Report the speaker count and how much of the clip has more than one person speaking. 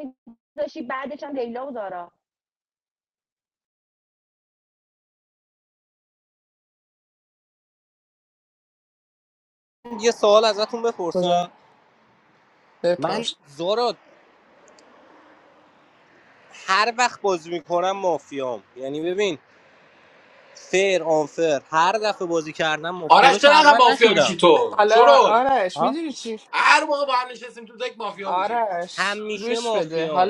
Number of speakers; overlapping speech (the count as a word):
four, about 15%